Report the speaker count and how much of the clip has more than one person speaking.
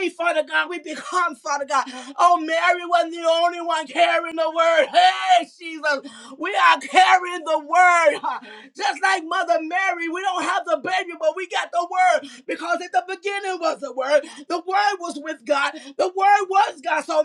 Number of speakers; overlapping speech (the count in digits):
1, no overlap